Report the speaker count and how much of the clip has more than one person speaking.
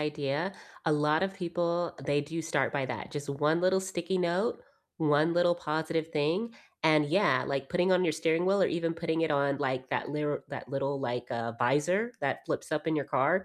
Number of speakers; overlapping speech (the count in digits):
1, no overlap